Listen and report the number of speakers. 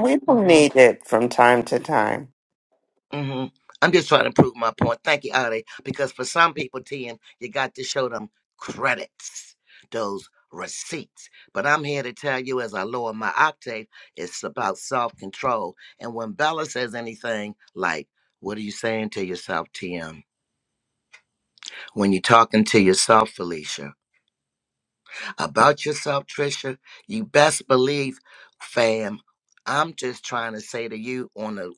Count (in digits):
2